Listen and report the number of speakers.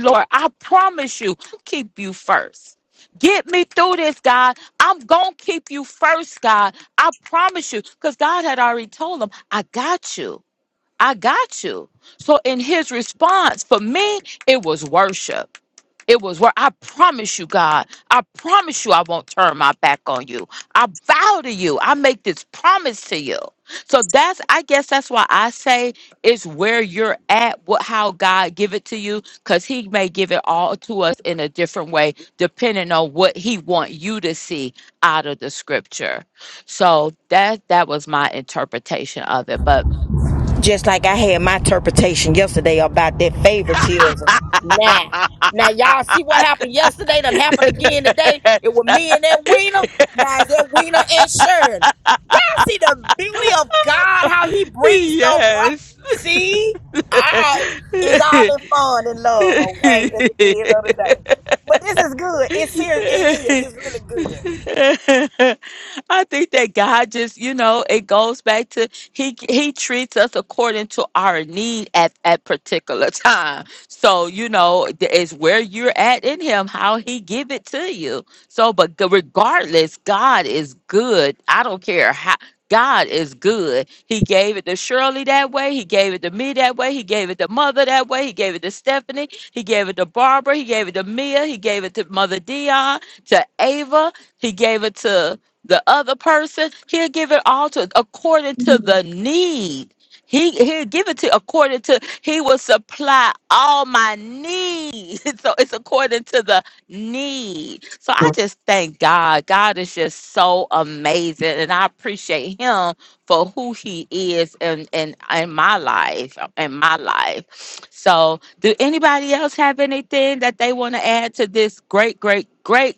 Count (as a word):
two